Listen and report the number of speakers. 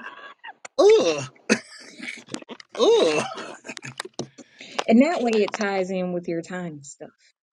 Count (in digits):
2